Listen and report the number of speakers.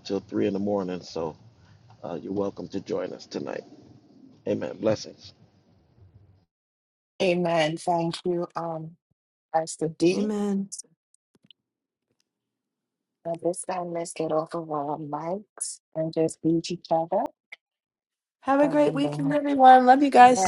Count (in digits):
3